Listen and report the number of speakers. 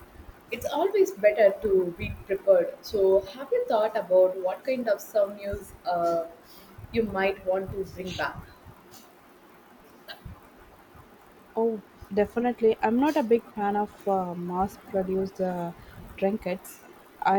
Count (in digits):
2